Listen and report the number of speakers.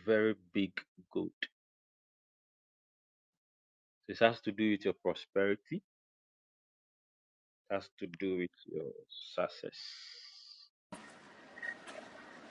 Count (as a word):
one